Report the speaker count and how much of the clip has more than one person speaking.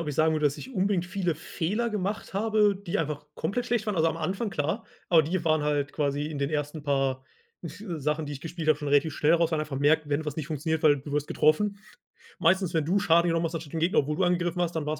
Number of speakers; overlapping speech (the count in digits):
1, no overlap